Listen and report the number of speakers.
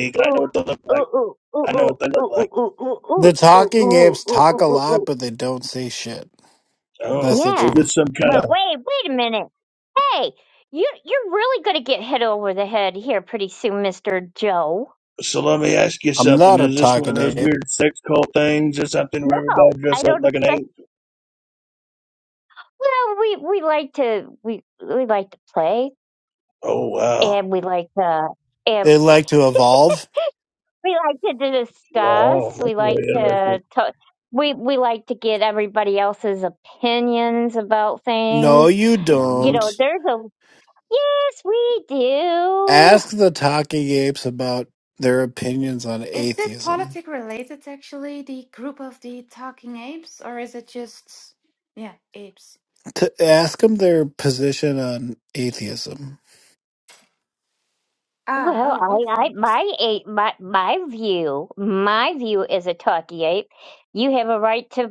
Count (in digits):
4